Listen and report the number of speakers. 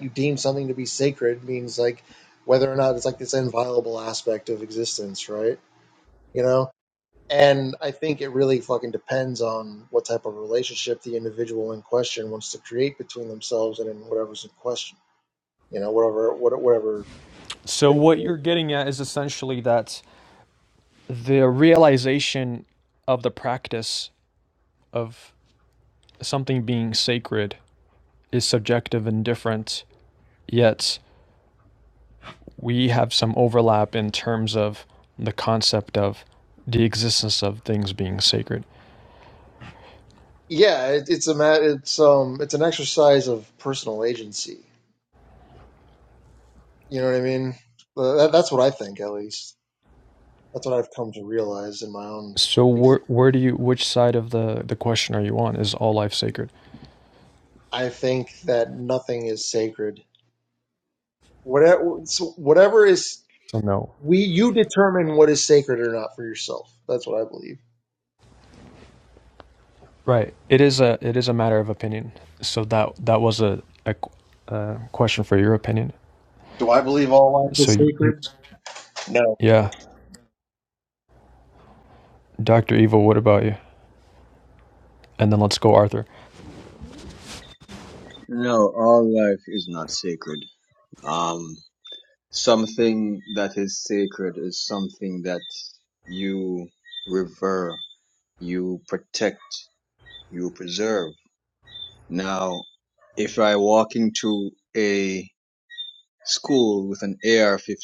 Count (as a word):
three